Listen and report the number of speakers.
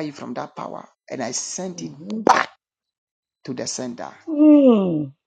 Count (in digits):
2